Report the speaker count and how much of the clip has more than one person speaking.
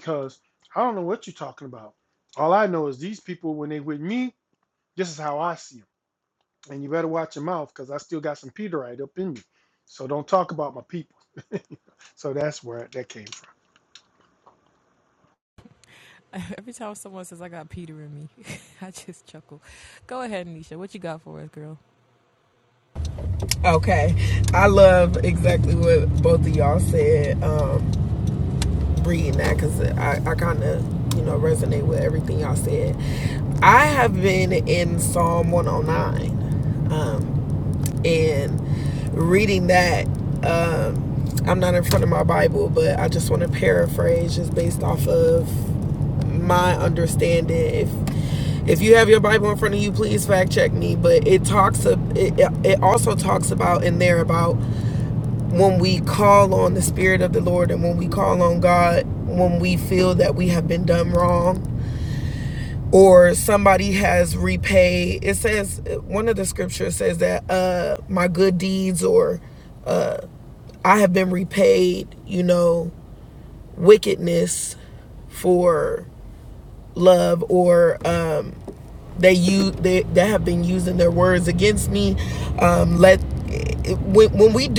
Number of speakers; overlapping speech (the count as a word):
three, no overlap